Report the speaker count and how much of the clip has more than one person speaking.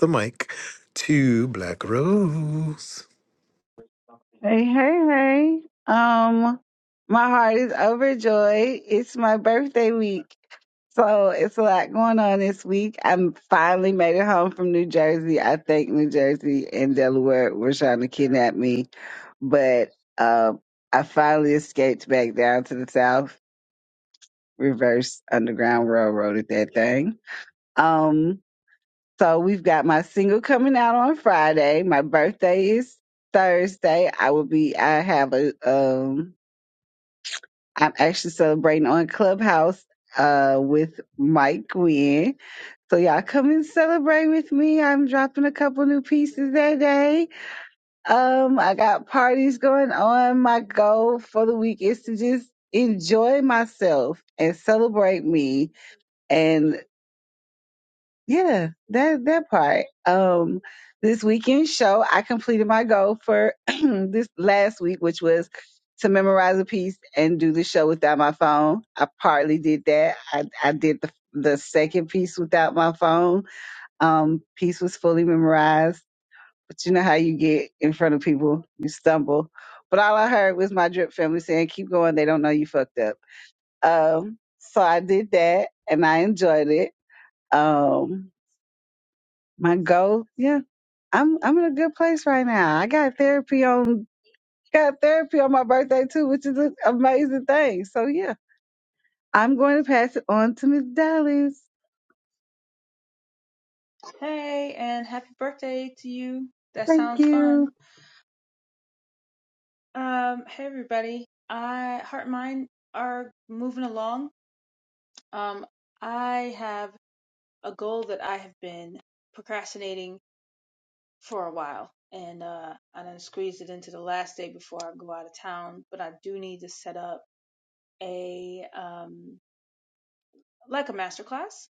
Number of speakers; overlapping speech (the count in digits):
3, about 1%